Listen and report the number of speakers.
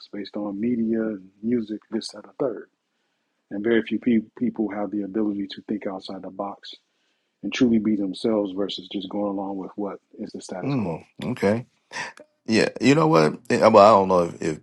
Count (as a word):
two